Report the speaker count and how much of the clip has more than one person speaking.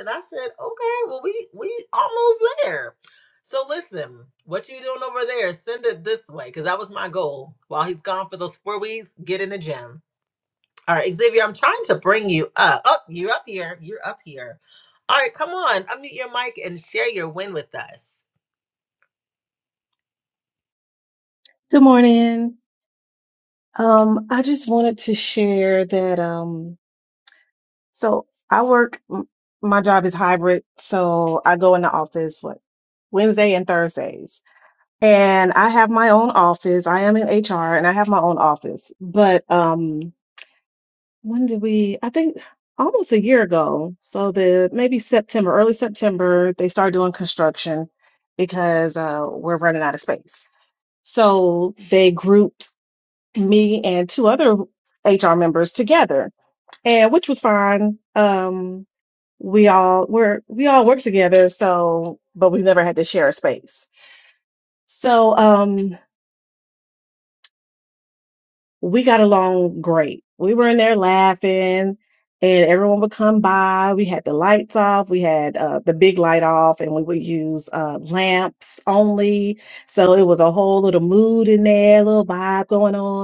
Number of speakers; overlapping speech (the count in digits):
2, no overlap